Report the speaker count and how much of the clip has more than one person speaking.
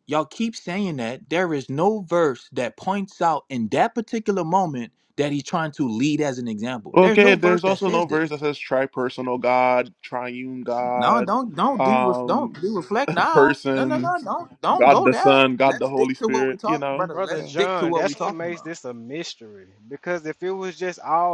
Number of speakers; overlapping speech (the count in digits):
3, about 33%